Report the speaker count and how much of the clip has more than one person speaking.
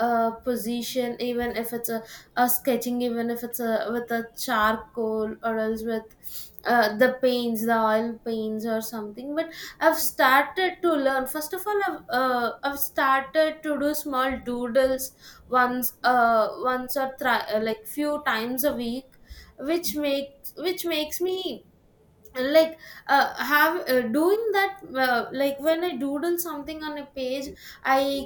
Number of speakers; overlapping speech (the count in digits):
1, no overlap